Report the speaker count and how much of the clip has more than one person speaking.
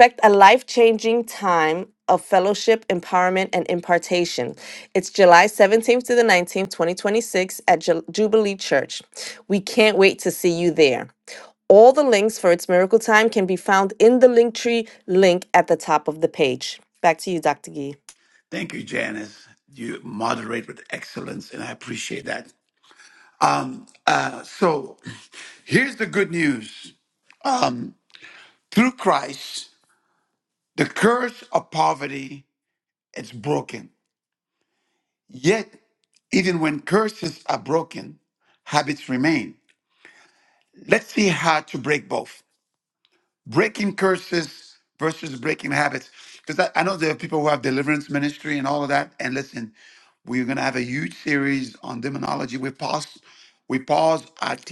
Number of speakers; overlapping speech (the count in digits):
2, no overlap